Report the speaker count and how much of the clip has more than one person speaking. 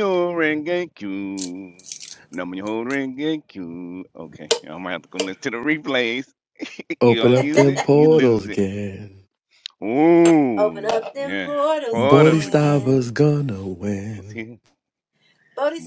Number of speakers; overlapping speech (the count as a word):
three, about 25%